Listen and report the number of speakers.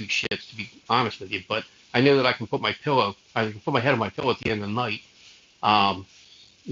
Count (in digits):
1